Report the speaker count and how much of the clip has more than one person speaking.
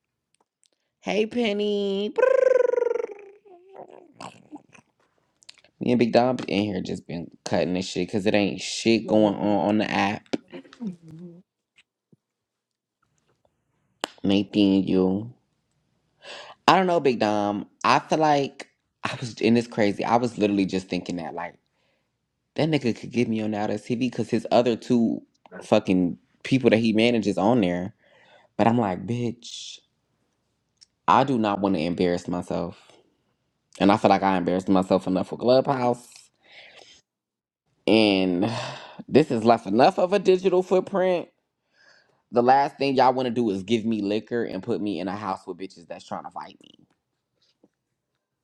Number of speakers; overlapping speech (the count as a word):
one, no overlap